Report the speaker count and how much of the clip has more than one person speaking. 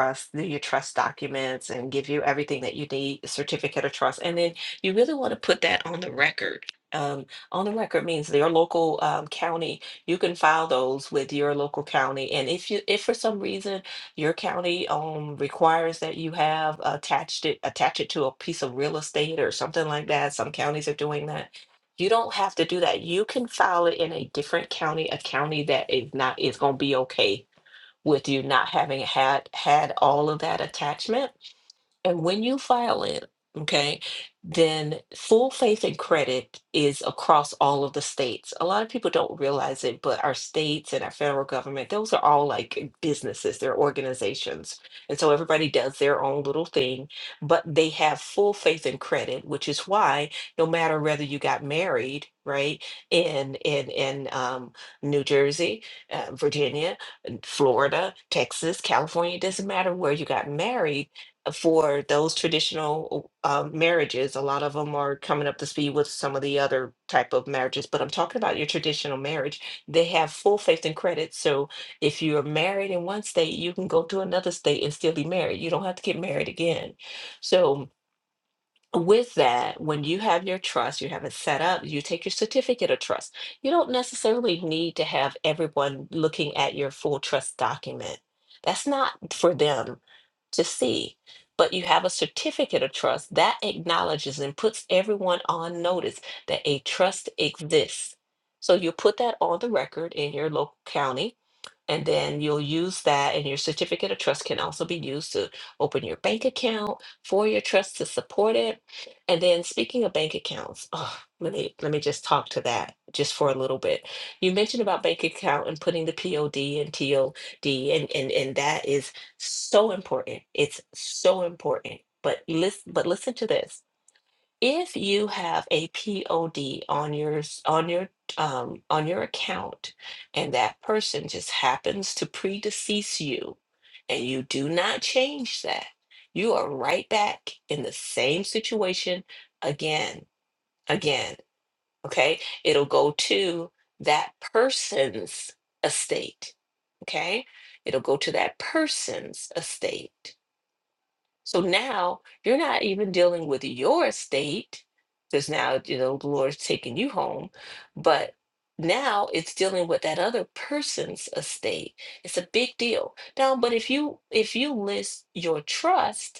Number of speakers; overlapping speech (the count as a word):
one, no overlap